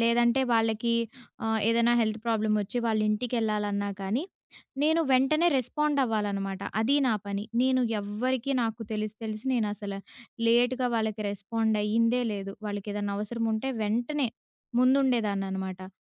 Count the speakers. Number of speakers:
1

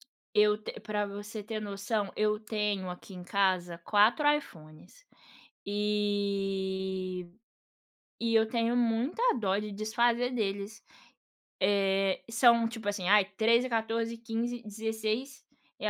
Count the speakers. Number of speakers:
1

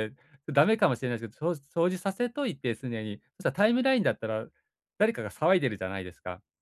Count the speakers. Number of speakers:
1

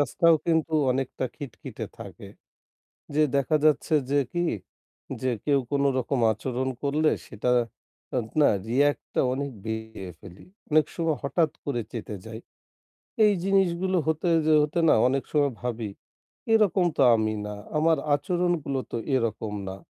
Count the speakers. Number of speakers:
1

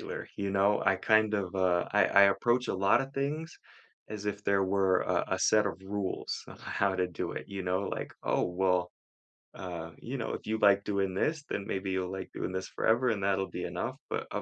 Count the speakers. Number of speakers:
1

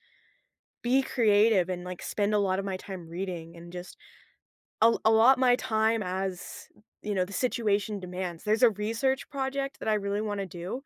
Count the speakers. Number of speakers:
1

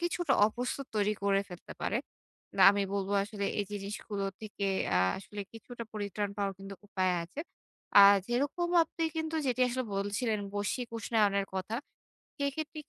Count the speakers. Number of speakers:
1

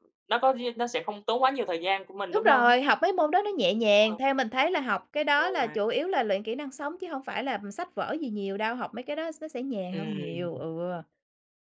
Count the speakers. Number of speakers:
2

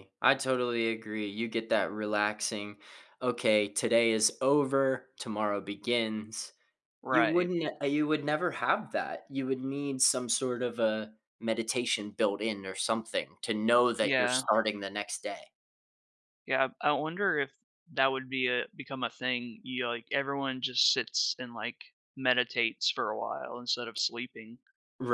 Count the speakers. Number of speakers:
2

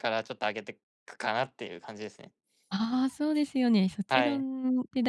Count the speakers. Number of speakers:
2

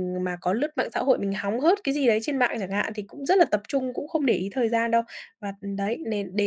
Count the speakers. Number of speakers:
1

